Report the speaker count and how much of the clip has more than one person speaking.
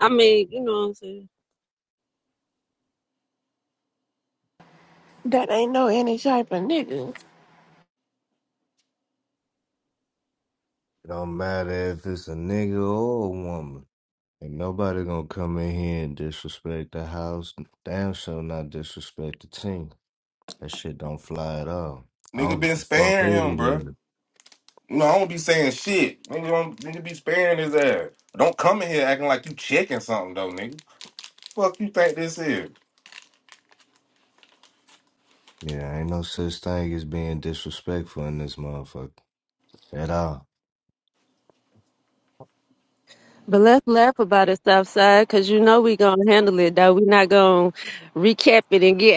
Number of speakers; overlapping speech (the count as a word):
four, about 3%